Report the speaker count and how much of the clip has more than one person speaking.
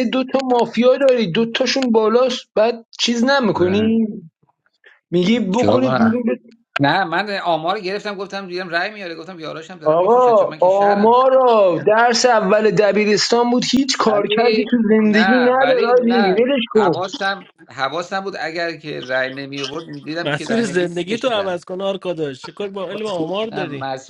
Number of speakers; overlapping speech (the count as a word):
three, about 28%